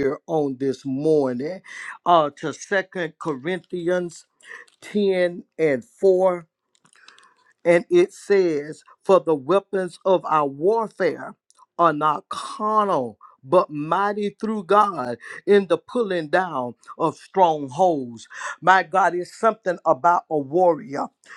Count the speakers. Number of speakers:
one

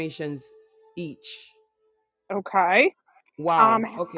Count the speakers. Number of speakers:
two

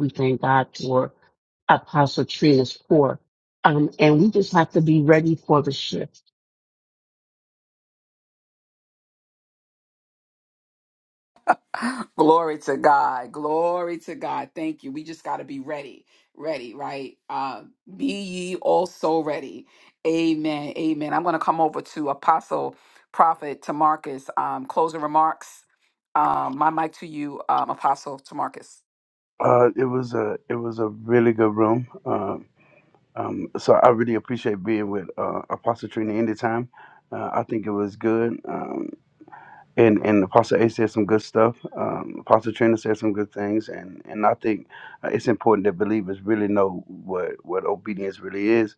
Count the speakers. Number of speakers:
three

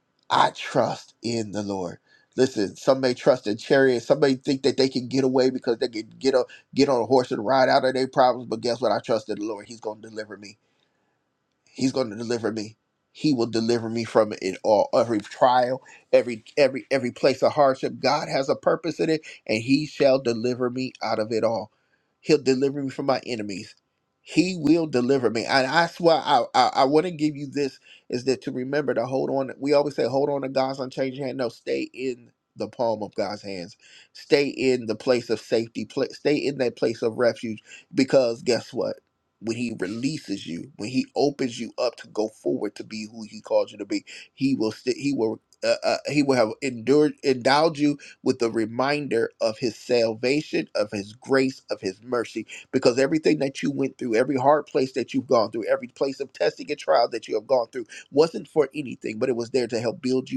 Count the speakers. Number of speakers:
one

